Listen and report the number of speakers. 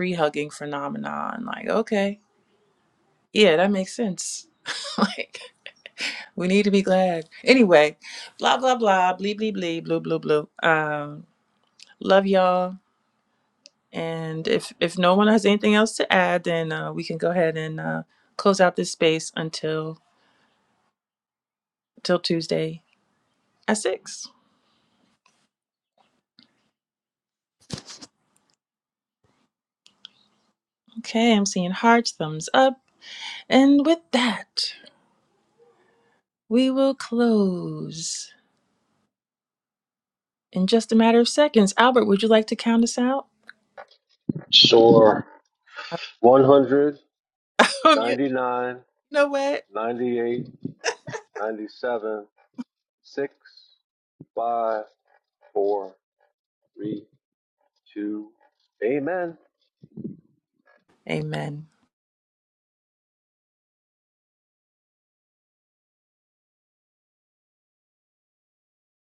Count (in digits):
2